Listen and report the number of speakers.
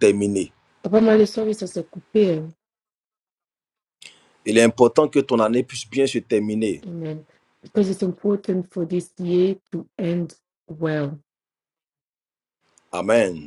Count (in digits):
2